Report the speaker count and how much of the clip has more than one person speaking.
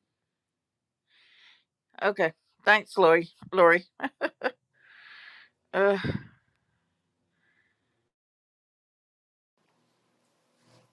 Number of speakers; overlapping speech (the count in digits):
1, no overlap